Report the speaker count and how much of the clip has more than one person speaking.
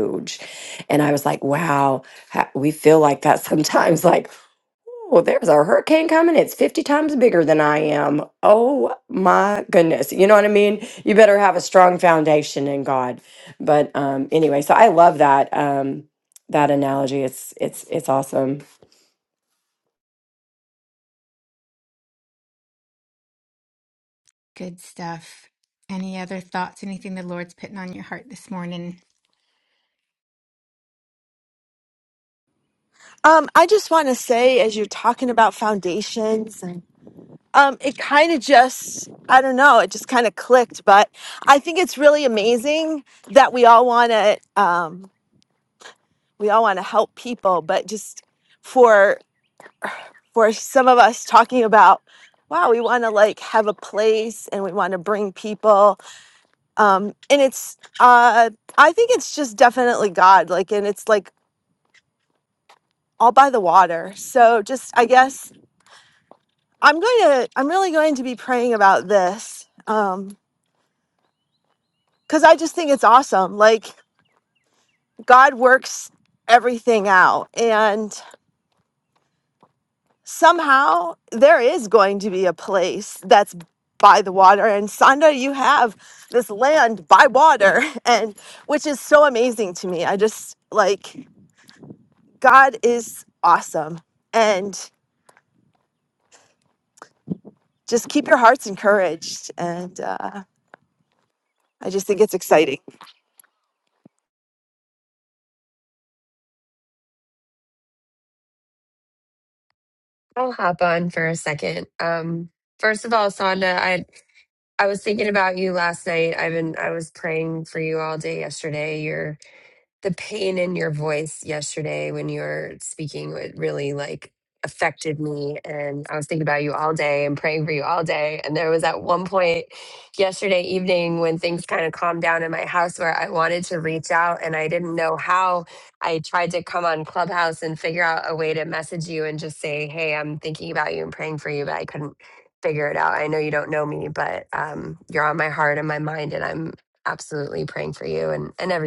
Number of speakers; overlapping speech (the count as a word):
four, no overlap